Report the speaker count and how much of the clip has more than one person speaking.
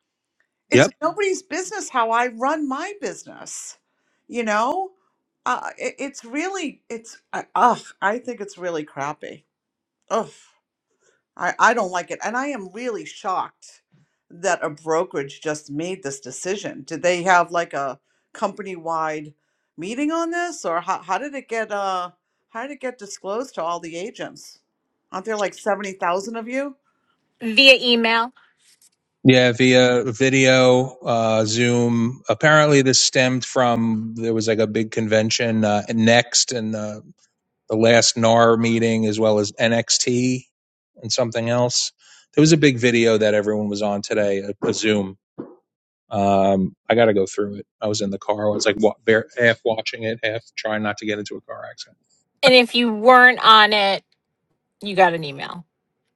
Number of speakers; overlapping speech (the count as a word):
three, under 1%